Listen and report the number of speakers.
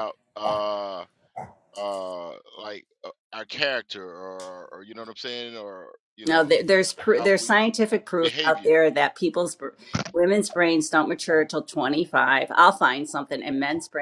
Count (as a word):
two